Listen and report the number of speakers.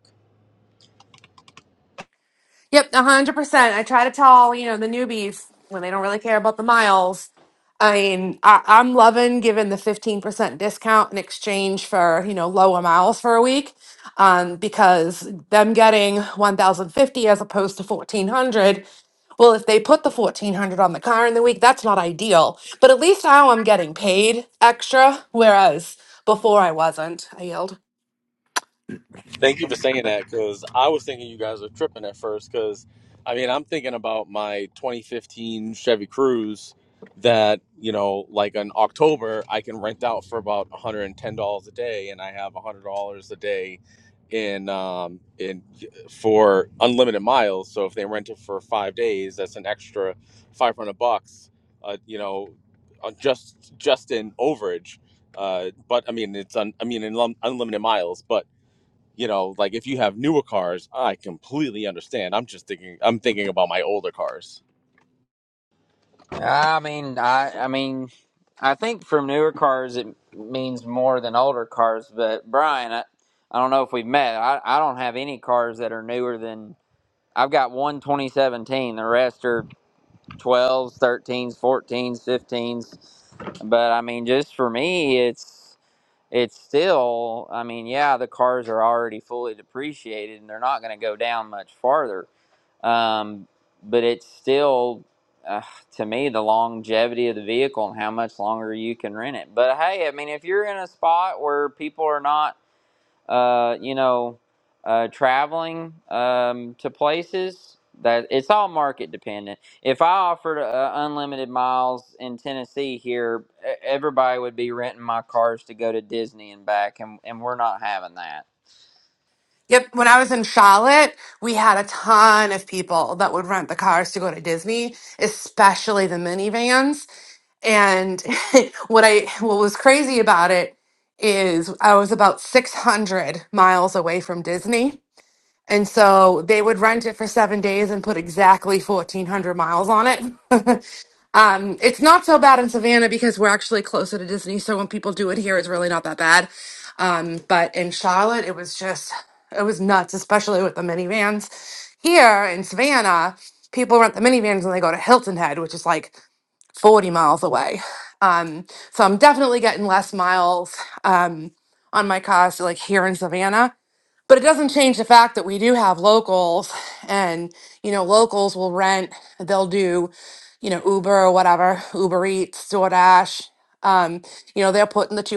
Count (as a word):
three